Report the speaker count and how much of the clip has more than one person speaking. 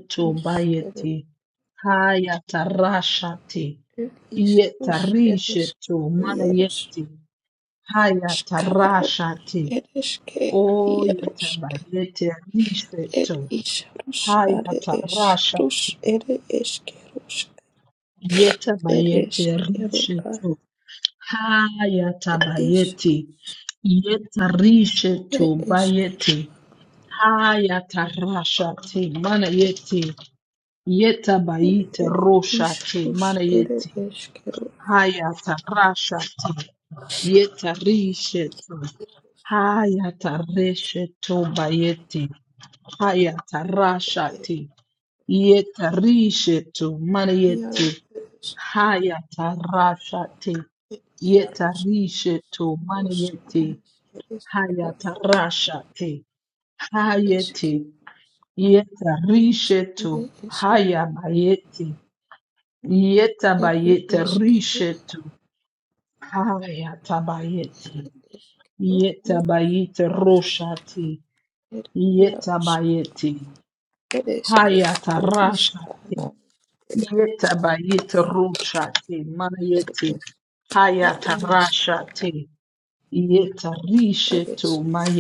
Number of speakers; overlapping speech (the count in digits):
2, about 22%